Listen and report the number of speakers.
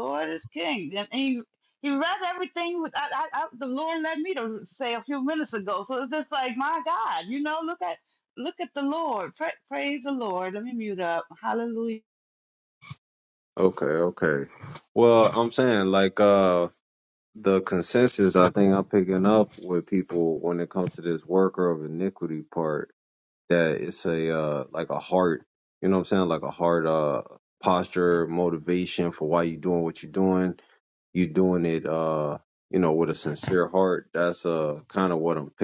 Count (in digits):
2